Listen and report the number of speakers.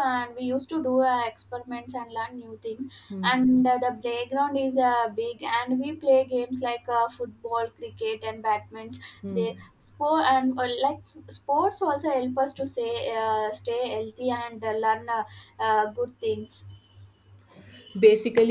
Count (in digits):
2